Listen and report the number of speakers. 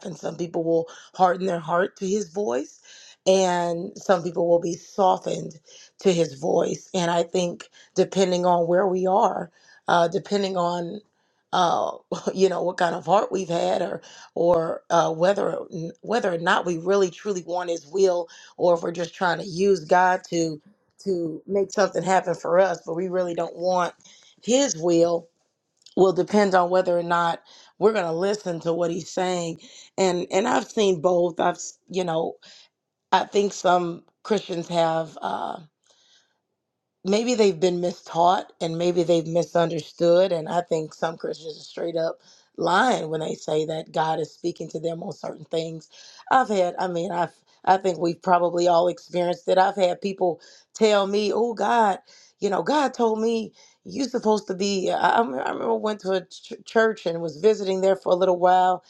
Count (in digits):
1